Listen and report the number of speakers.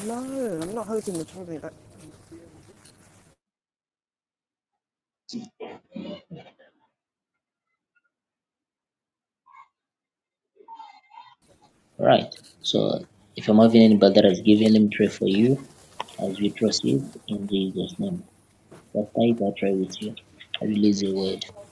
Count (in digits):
2